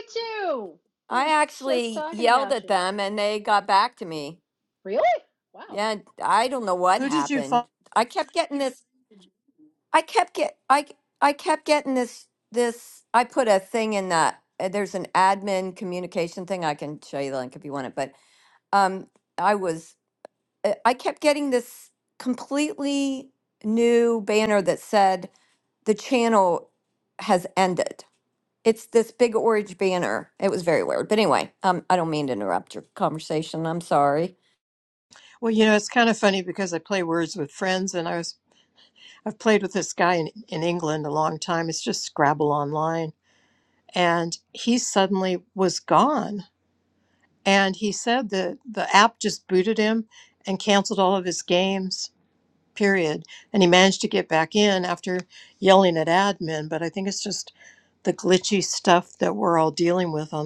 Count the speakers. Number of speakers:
3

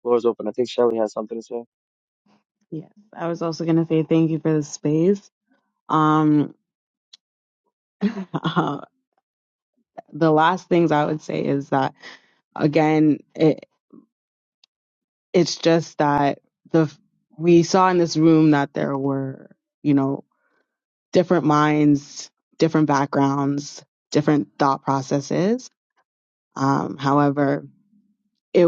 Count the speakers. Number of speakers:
2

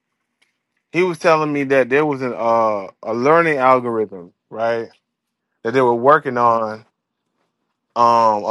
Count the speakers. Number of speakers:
1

